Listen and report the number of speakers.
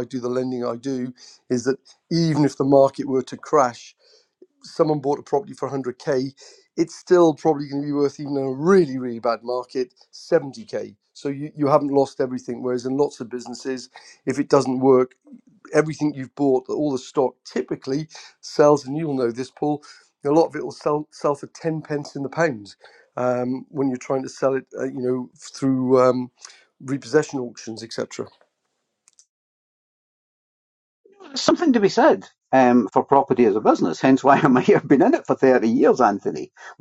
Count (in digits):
2